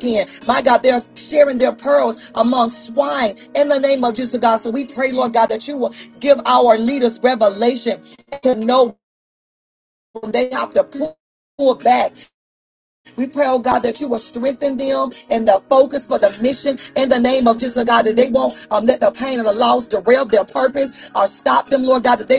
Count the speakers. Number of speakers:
one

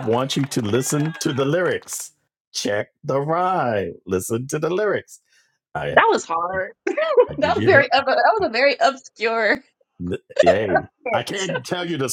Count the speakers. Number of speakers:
two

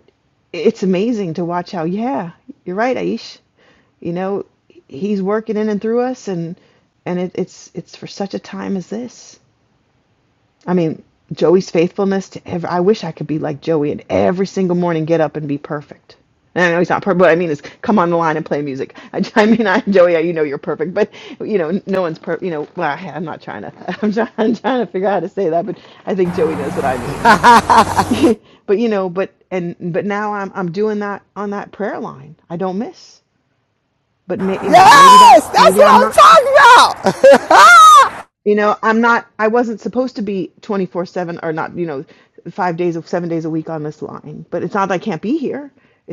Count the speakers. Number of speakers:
two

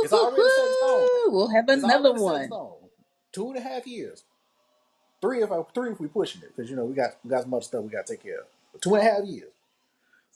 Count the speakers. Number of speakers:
two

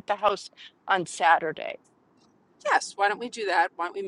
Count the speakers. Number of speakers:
two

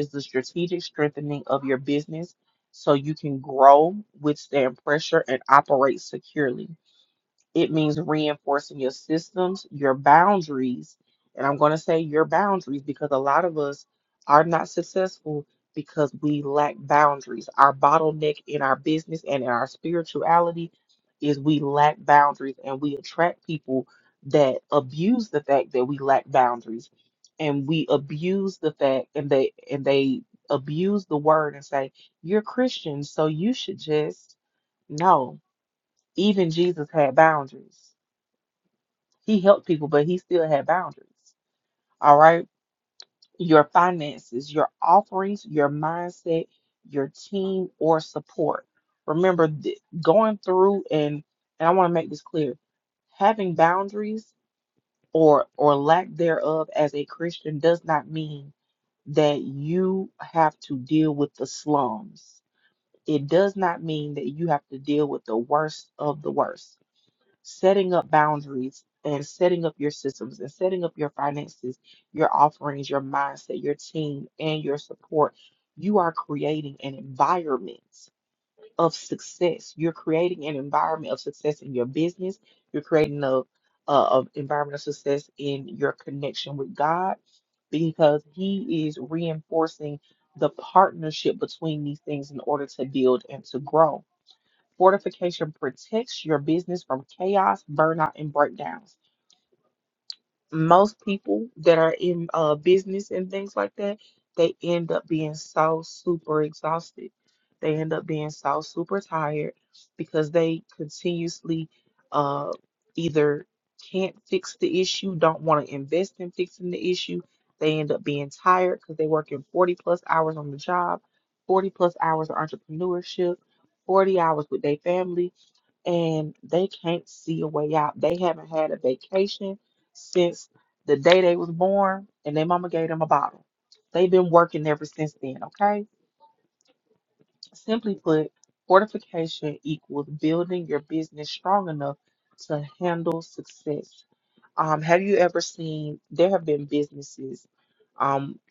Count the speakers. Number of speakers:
one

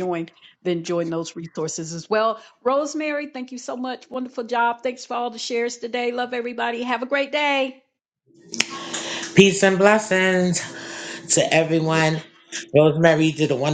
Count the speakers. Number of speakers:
two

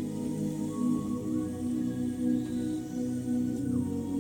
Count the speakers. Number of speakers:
zero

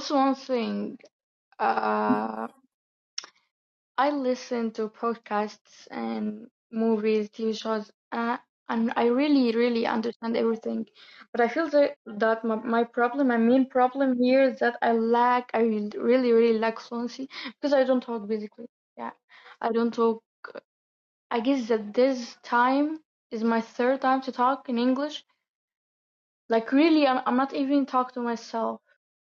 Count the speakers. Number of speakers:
one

